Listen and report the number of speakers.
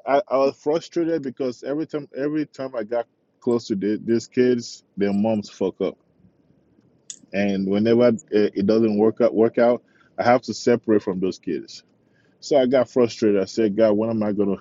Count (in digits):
1